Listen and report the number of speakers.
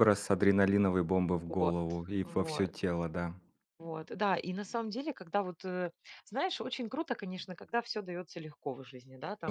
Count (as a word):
two